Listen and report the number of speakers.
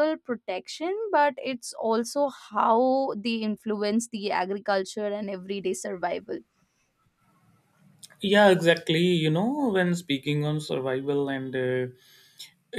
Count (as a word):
two